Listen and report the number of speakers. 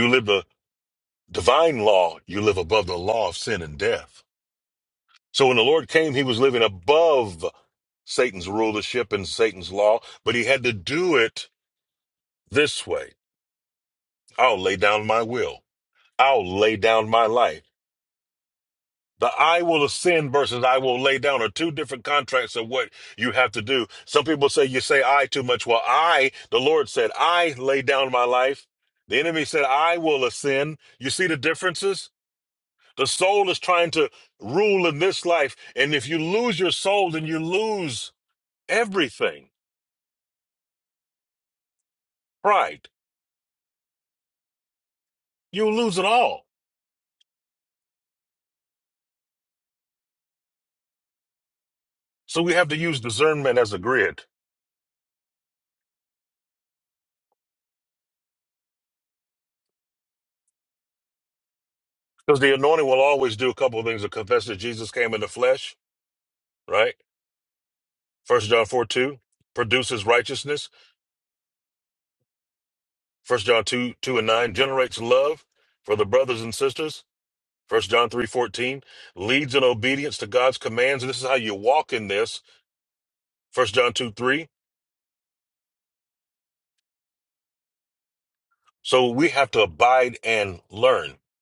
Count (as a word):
one